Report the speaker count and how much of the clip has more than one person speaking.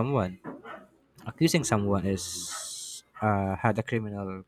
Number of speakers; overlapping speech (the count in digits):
1, no overlap